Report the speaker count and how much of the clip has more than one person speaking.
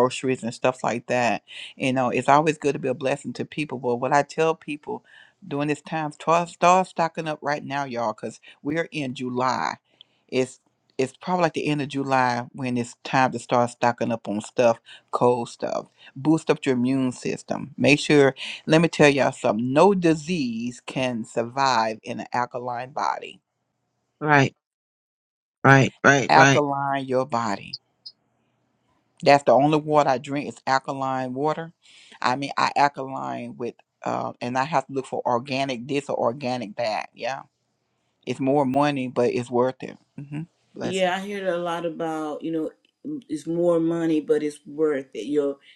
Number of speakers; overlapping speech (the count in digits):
3, about 1%